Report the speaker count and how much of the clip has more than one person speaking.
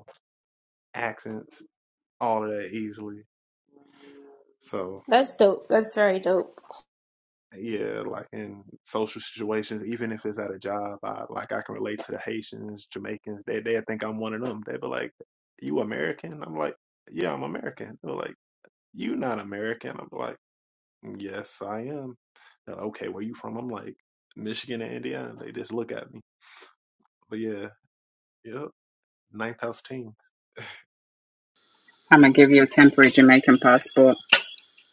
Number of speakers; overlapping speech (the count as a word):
three, no overlap